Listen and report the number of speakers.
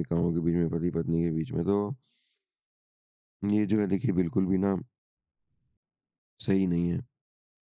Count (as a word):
one